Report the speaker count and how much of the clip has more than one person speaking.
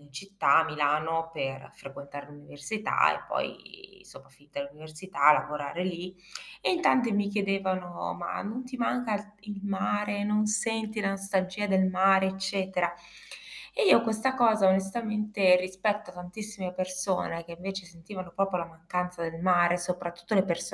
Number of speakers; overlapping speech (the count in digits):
1, no overlap